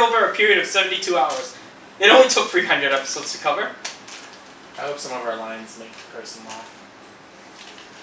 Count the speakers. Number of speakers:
2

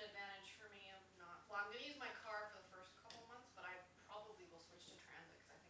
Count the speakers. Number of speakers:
1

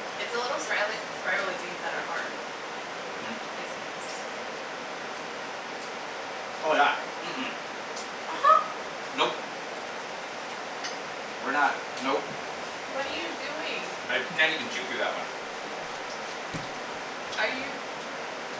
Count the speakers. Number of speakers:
2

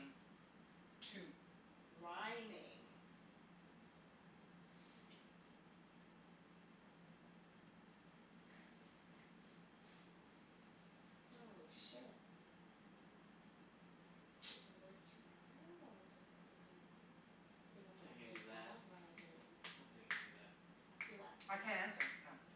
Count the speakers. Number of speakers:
3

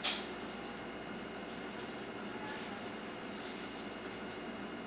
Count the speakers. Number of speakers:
0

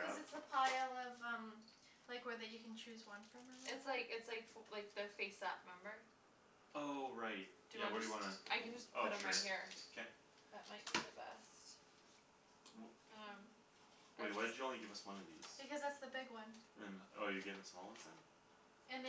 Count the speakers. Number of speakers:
3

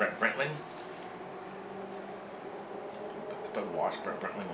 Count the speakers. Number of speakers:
1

